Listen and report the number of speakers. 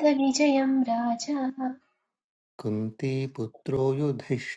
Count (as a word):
two